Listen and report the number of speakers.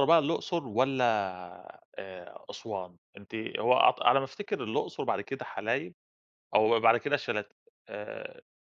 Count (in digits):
1